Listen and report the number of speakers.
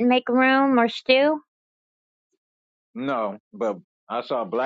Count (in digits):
2